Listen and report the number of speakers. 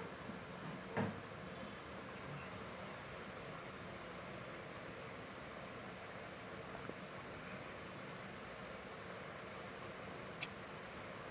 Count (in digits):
0